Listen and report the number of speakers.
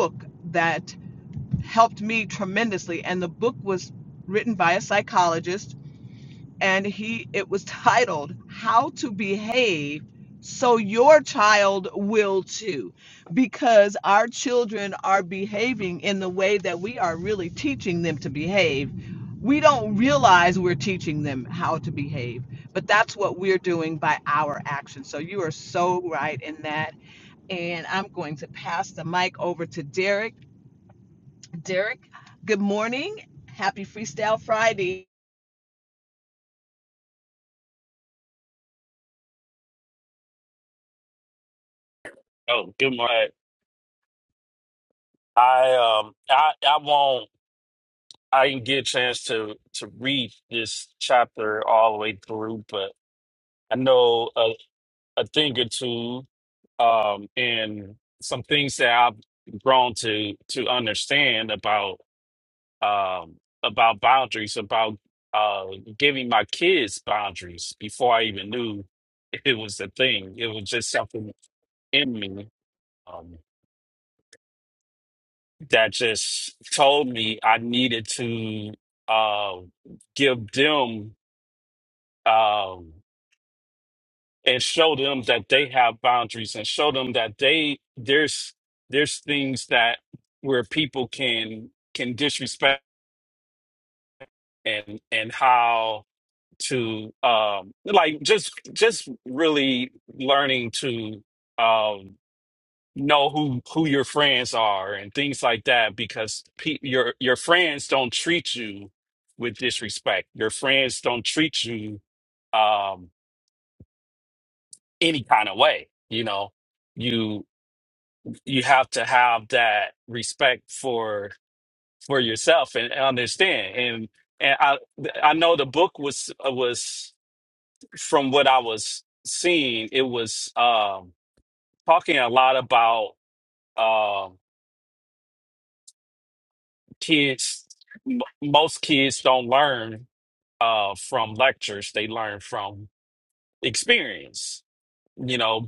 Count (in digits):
2